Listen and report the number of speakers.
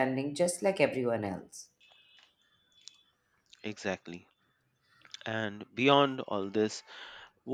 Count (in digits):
2